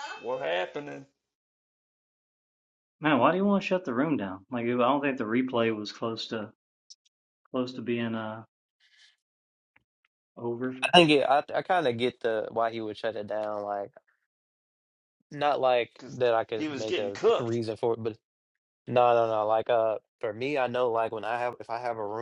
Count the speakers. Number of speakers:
3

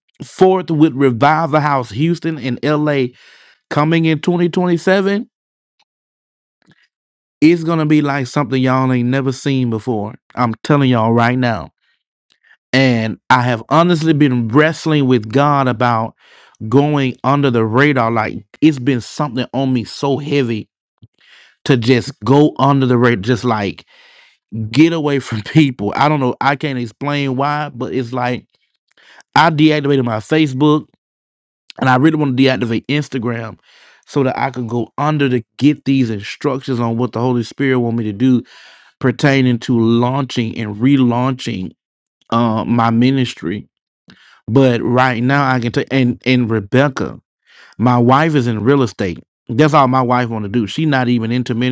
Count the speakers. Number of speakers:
1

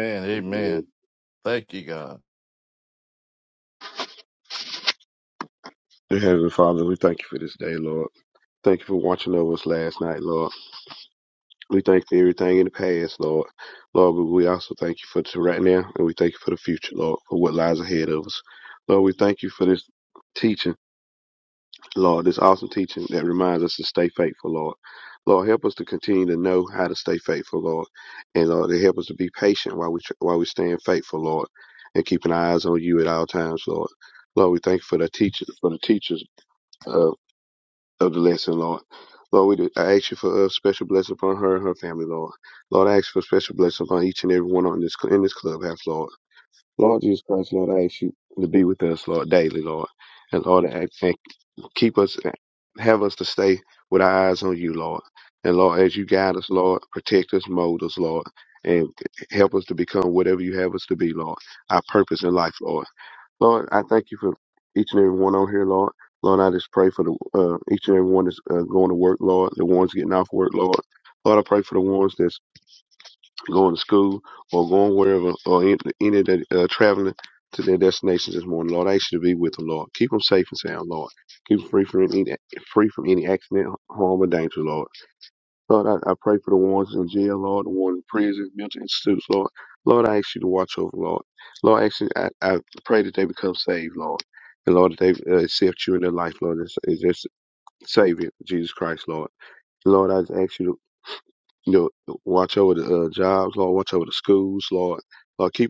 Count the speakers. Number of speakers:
2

